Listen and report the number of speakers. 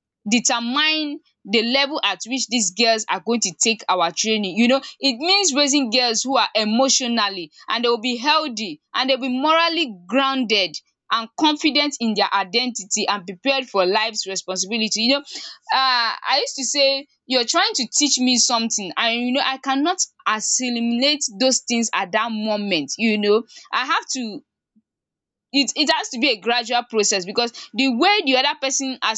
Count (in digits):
1